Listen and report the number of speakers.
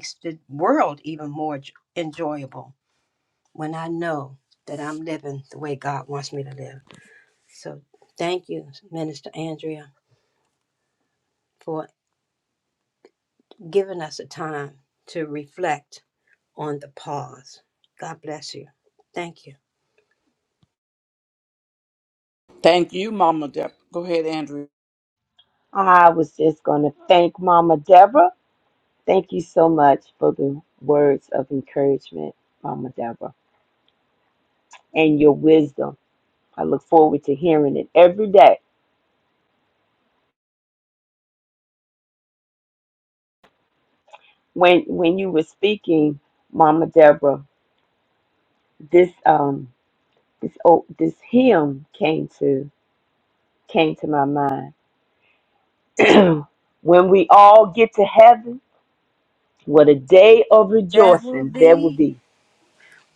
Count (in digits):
3